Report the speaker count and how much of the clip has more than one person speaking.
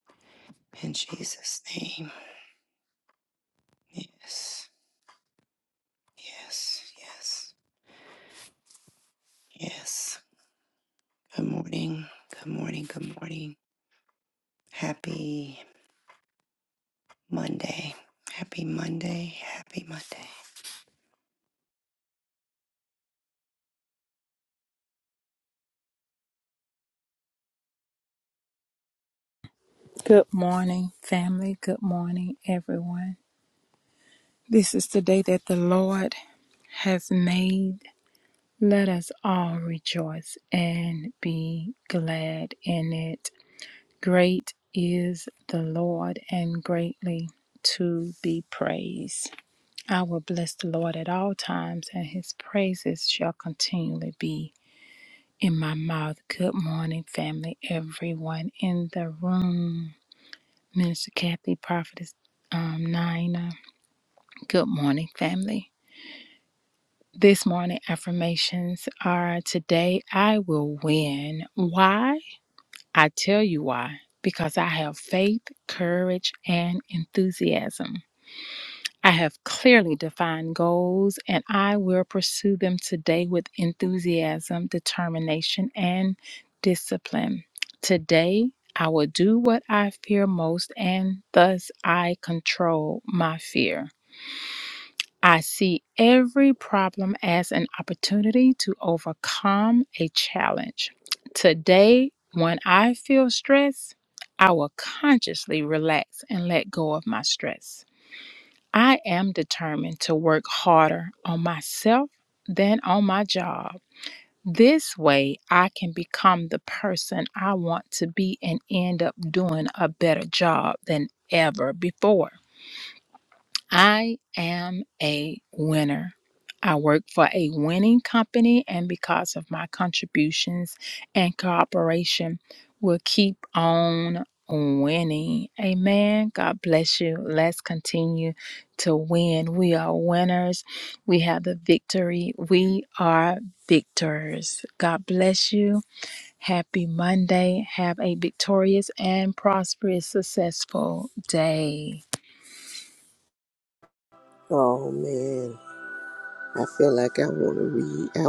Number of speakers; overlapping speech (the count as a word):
three, no overlap